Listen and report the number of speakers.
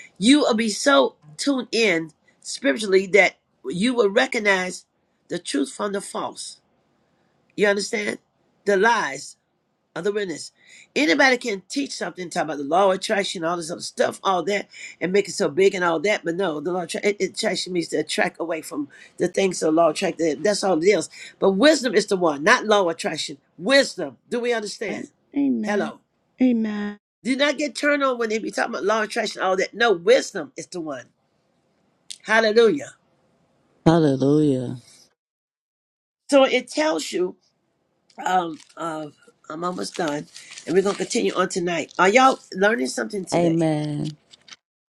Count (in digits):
3